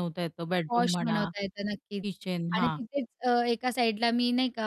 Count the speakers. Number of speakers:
two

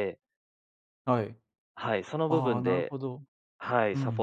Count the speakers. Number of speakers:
two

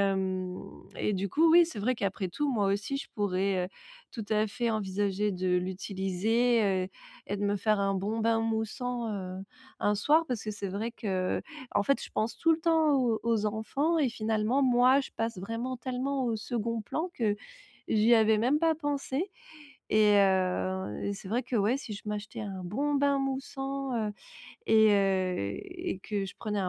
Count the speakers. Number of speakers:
one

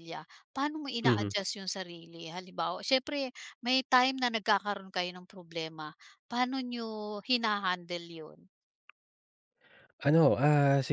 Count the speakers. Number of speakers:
two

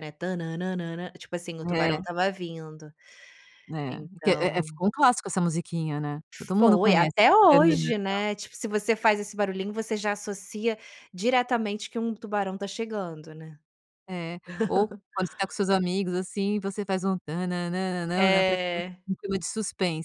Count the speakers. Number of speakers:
two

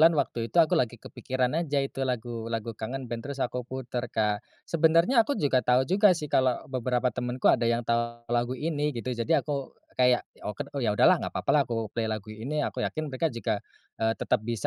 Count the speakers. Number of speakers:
one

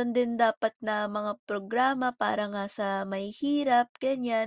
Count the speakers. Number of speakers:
one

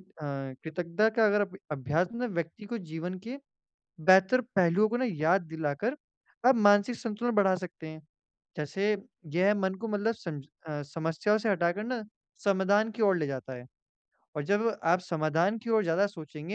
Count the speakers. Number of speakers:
one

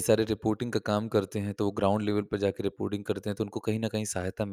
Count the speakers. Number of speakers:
one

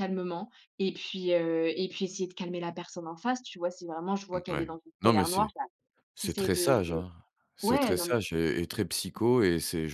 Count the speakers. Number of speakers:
two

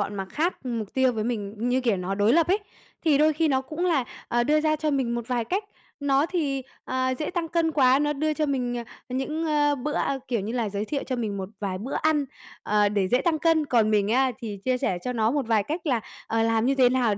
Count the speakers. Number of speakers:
one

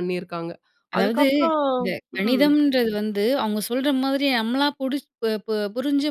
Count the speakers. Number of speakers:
two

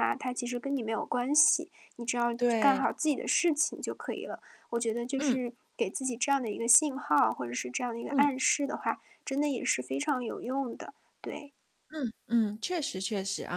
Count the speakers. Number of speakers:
two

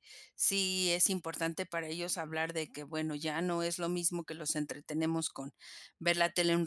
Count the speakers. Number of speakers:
one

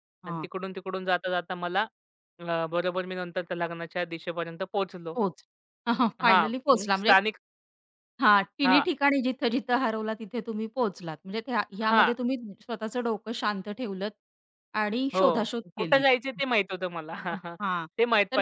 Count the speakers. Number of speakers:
two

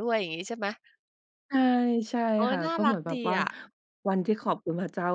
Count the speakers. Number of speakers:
two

